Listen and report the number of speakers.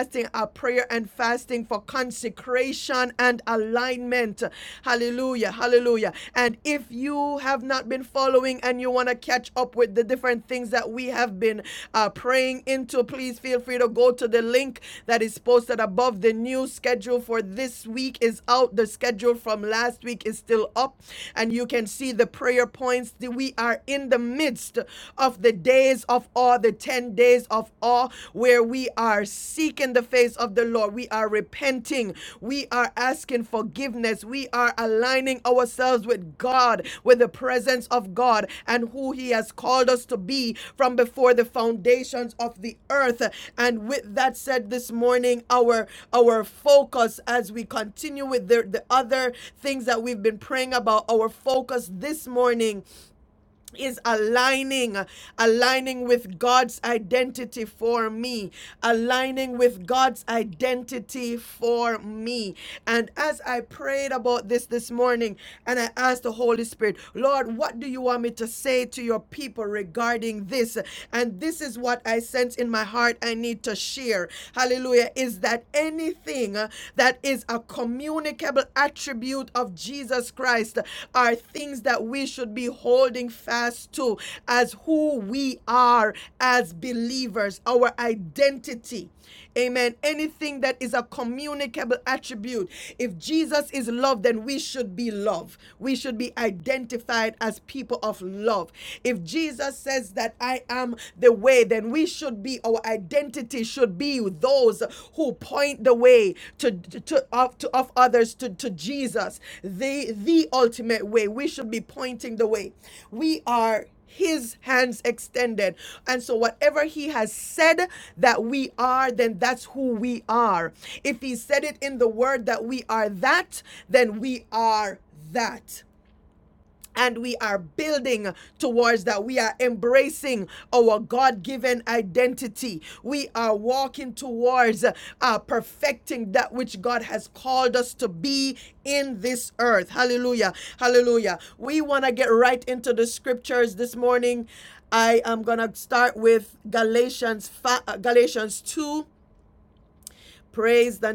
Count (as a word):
one